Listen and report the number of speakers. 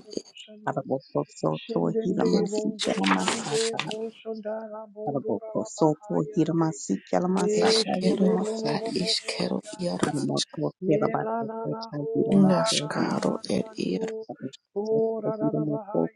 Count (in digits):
3